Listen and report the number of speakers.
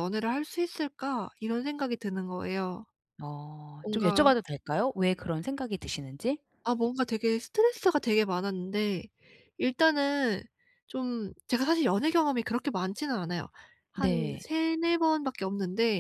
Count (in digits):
2